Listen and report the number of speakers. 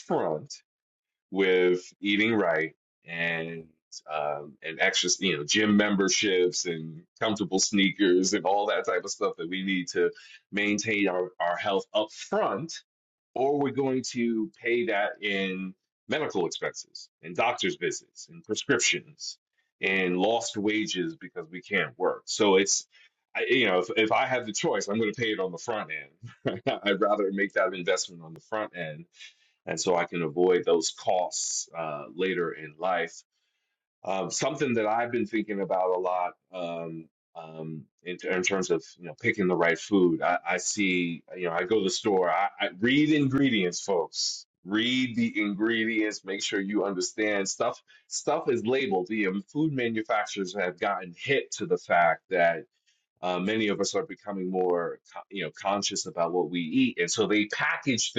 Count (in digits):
1